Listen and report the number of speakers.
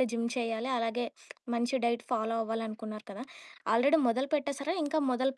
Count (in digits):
1